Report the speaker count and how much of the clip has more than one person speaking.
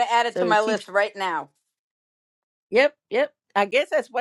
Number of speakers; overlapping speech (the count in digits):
2, about 10%